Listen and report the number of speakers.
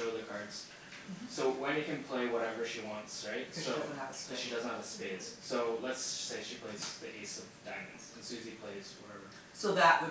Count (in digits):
2